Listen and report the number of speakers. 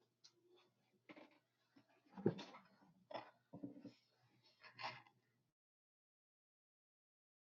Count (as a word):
zero